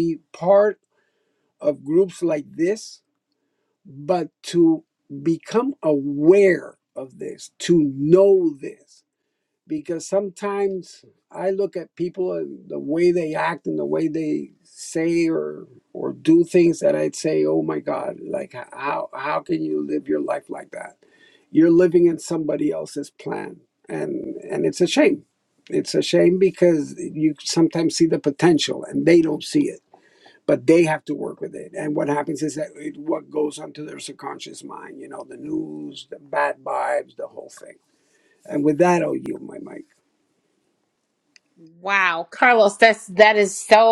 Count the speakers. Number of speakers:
2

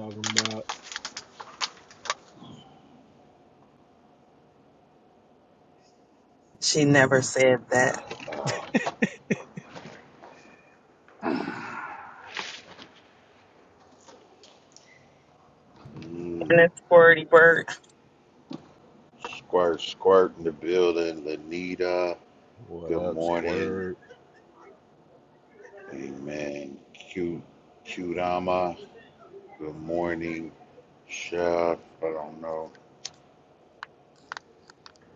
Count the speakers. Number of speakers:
3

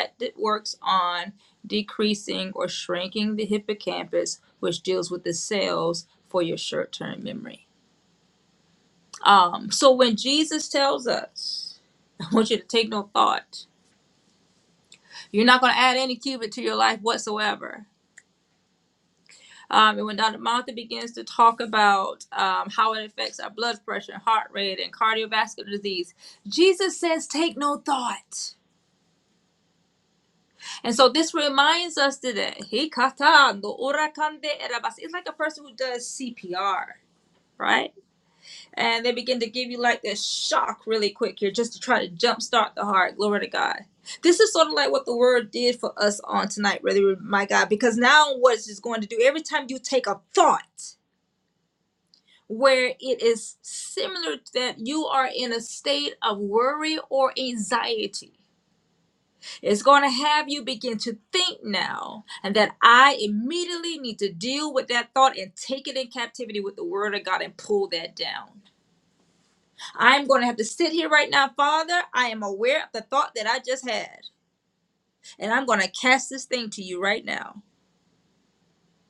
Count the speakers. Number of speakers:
1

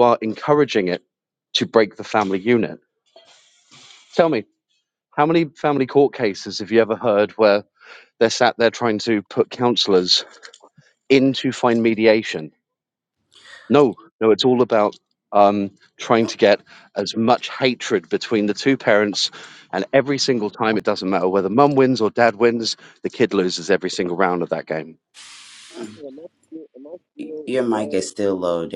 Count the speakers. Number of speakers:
3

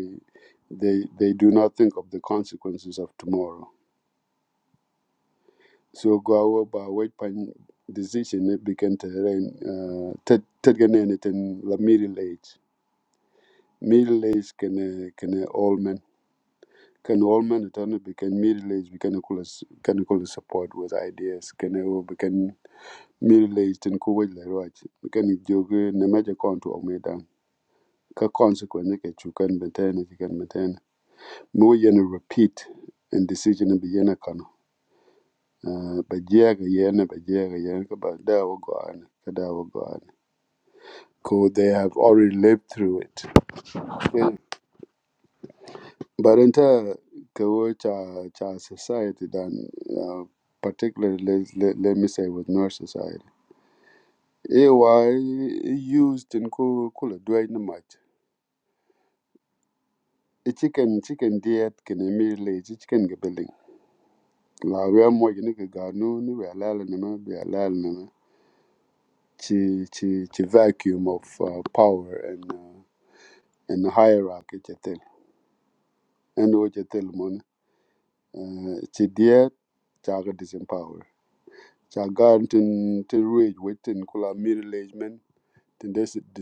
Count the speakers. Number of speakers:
1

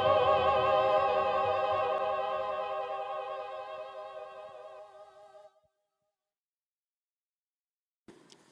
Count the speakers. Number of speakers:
0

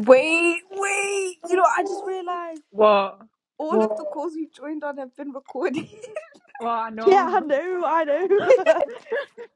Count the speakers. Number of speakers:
3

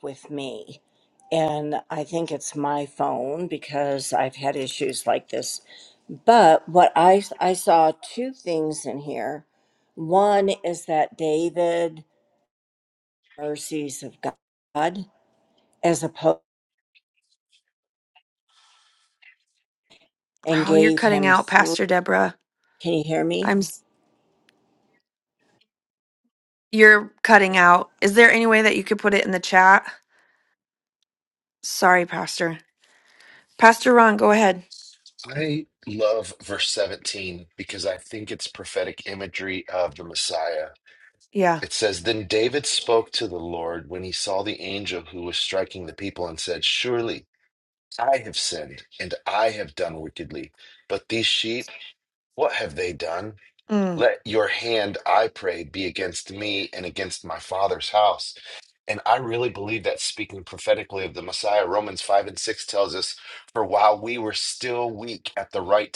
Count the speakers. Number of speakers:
3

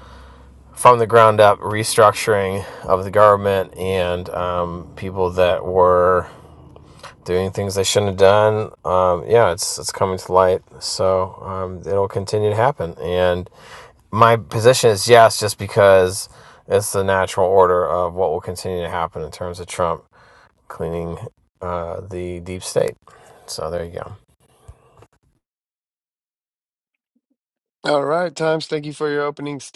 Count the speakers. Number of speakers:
2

